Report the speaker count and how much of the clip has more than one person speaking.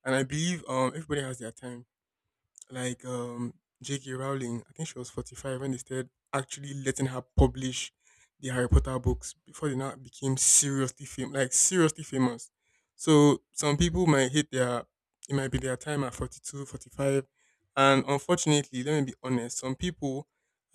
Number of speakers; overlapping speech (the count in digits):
1, no overlap